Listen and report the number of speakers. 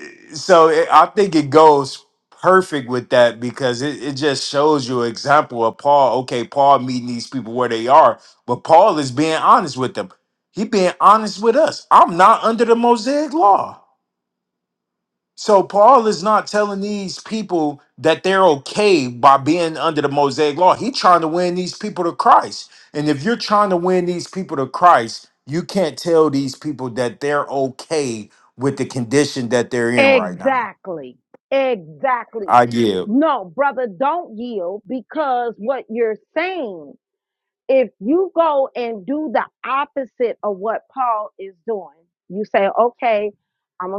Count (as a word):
two